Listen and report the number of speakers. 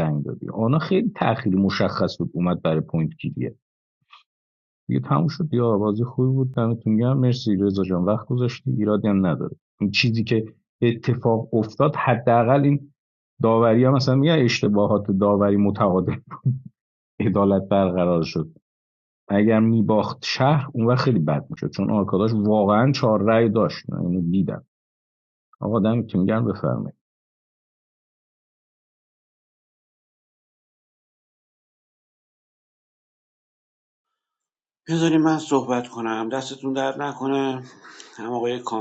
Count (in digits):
2